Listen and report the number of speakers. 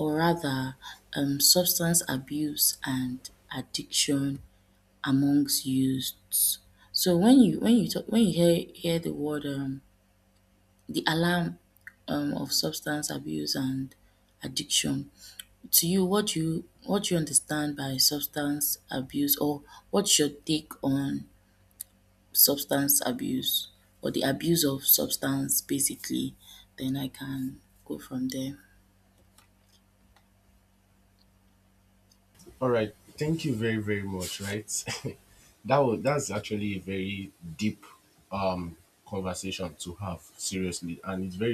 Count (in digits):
2